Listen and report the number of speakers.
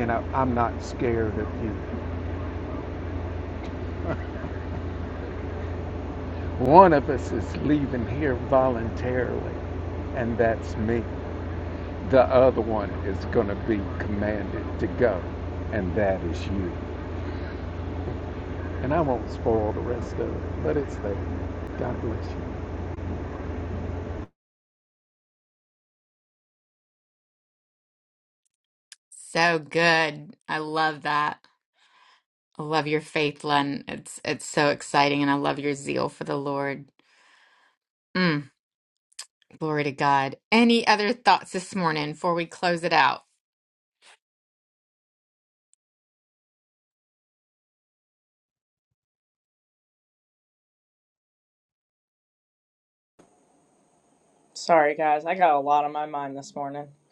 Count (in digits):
3